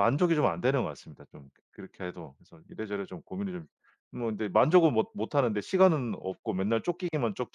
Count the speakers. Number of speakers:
one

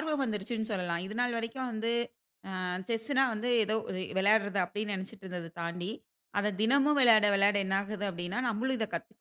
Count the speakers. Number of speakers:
one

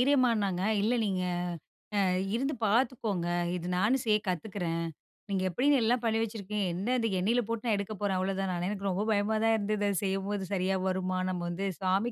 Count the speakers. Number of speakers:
one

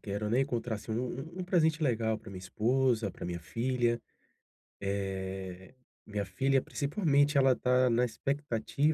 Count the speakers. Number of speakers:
one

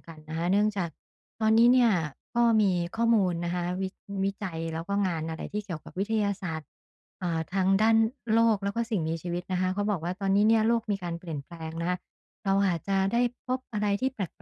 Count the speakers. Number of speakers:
one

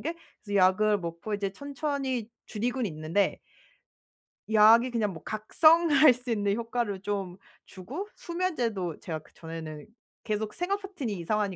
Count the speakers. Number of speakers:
one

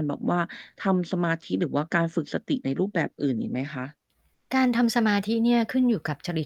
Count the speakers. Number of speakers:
two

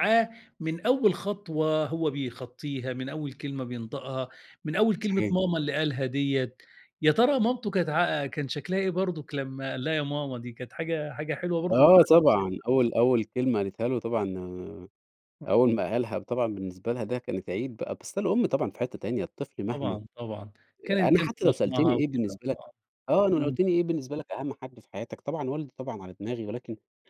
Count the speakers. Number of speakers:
two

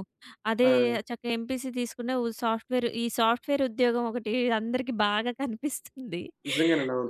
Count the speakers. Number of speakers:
two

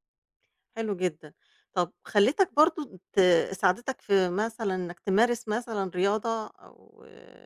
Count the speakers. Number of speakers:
one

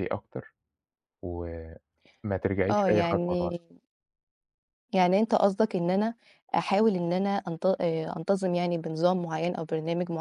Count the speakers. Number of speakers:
two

